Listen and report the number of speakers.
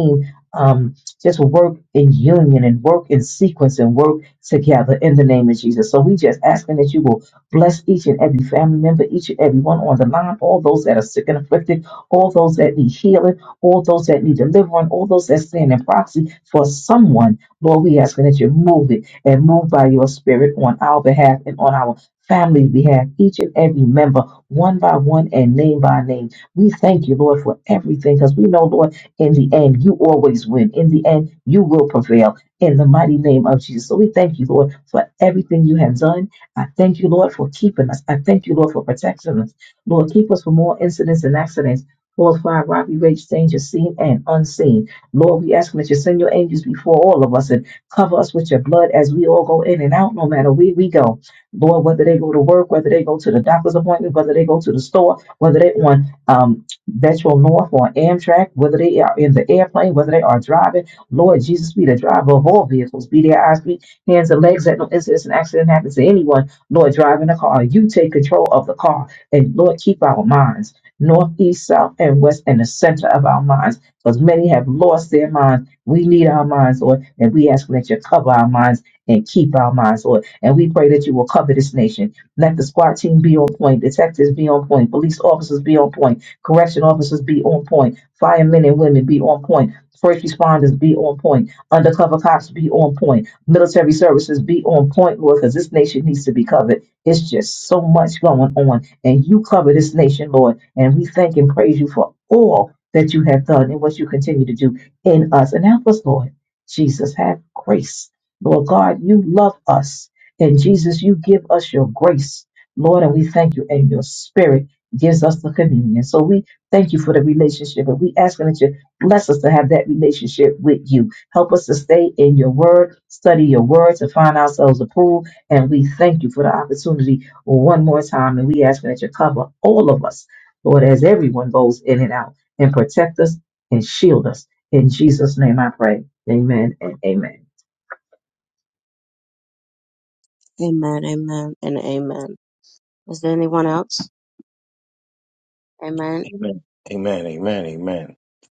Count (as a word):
three